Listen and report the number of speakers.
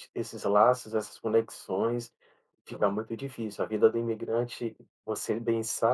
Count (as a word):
one